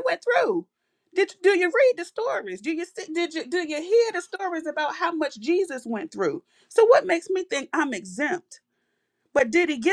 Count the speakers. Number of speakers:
one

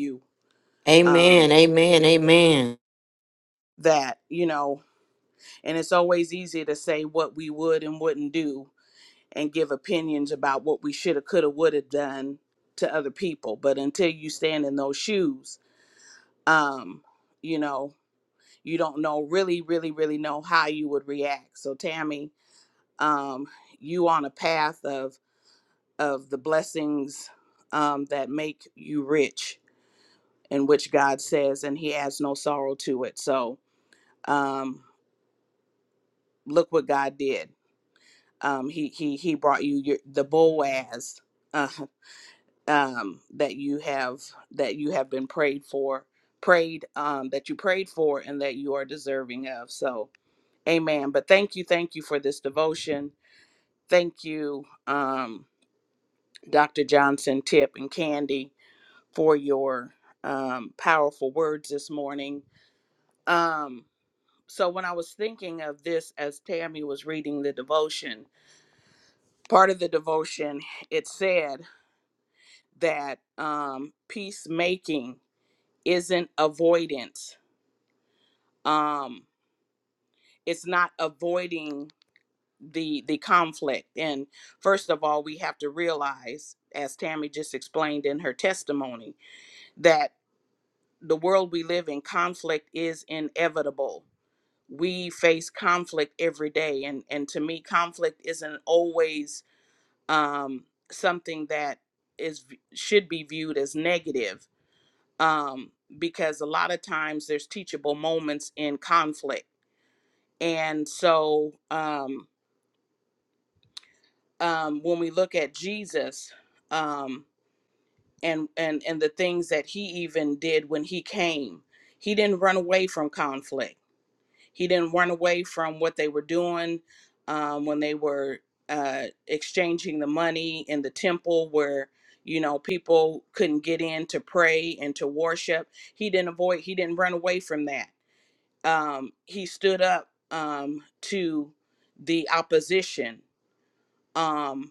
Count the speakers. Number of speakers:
two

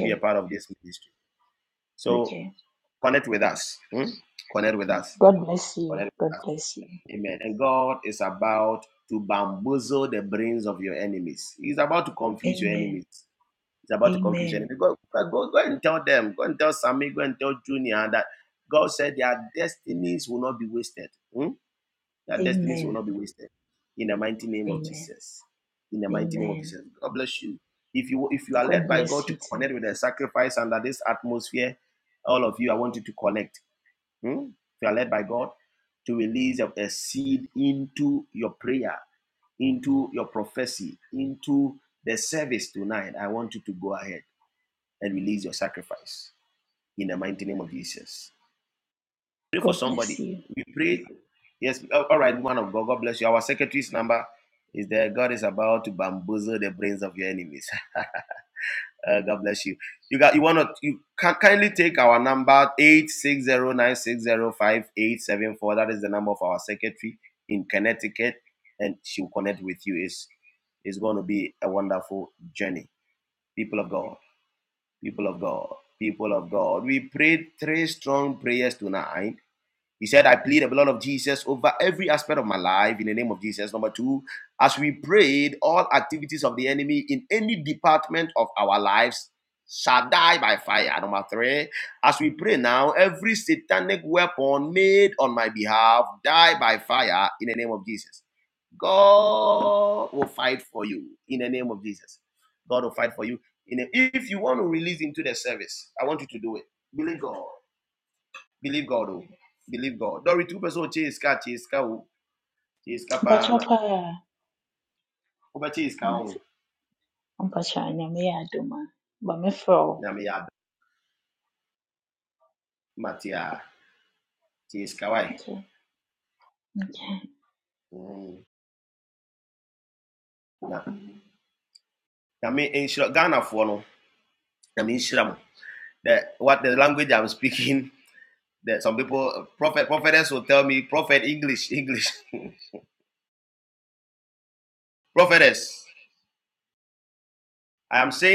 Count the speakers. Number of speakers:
two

